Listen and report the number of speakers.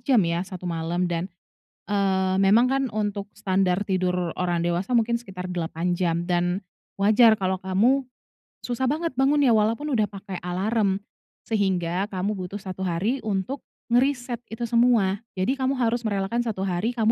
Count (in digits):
1